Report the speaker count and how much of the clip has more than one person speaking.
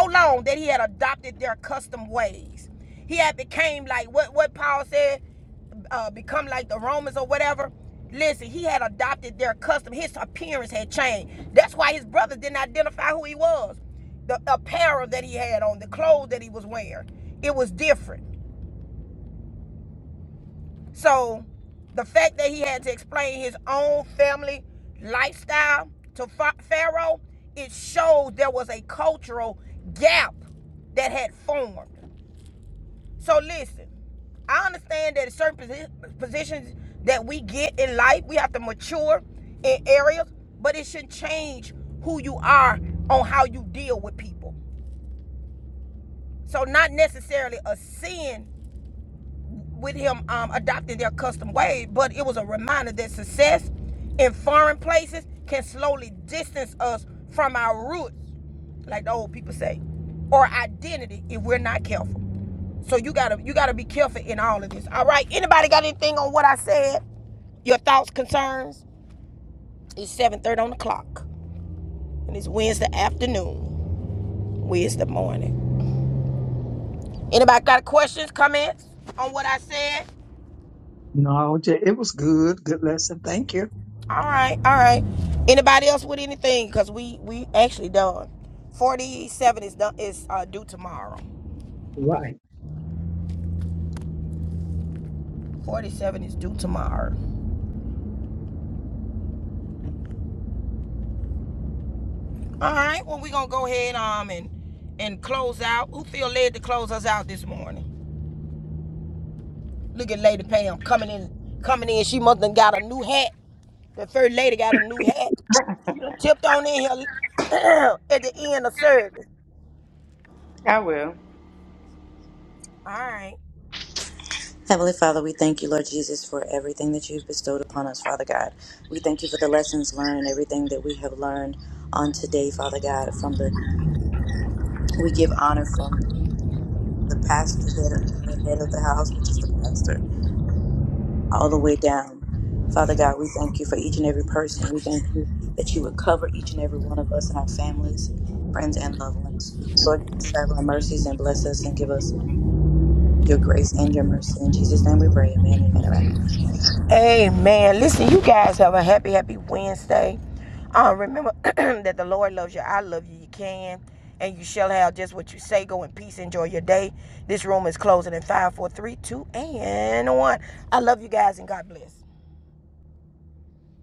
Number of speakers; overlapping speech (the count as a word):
three, no overlap